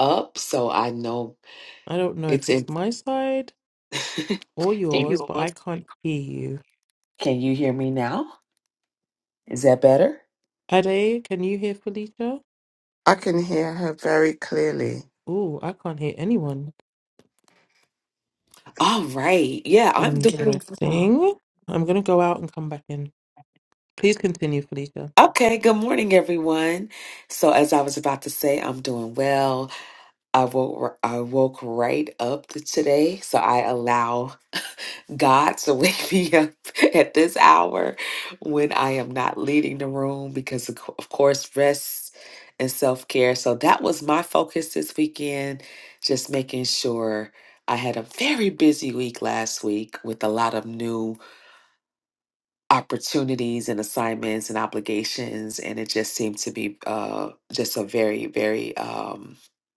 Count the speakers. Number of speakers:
3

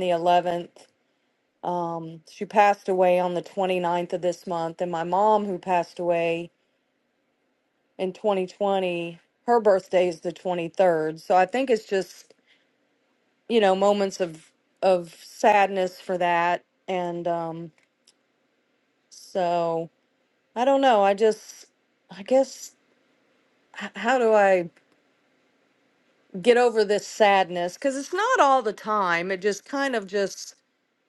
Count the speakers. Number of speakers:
1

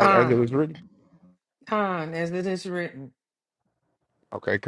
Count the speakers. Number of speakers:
2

